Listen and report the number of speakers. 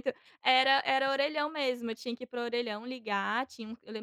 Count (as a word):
one